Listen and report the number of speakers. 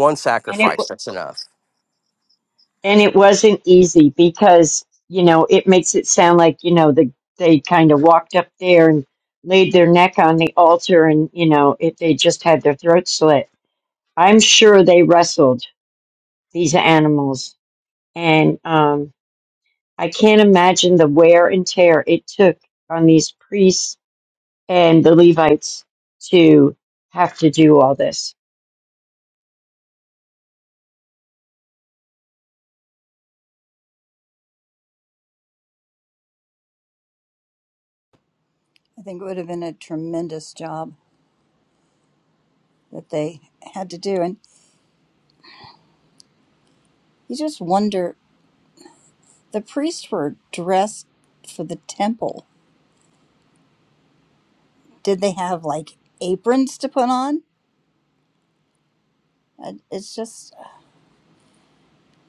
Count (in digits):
3